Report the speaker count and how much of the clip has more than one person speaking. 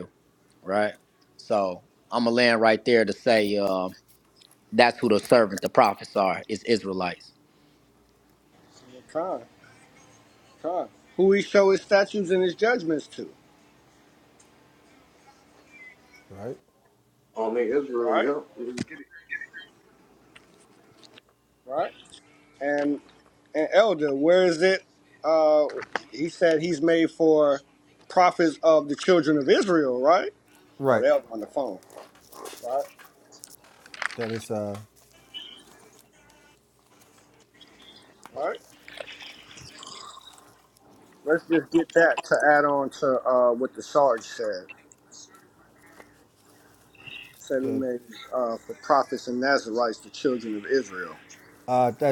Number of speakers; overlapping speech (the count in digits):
4, about 1%